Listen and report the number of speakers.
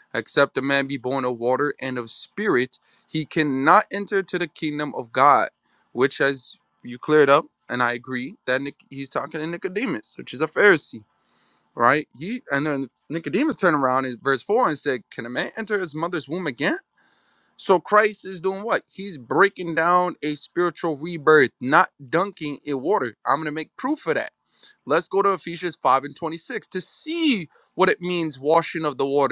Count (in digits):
1